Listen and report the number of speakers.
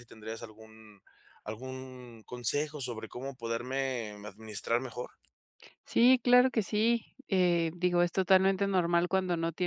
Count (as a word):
two